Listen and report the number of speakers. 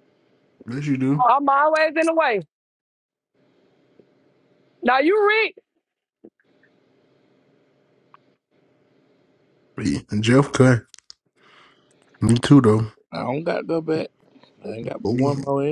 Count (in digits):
3